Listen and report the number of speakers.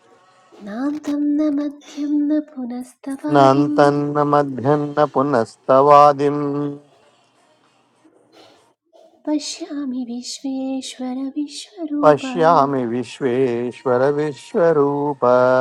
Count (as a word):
two